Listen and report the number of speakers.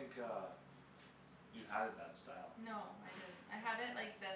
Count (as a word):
two